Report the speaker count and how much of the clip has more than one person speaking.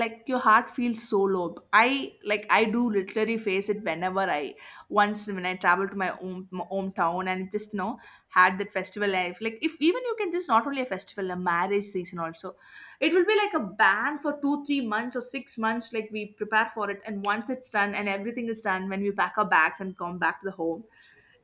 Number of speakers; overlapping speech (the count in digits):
1, no overlap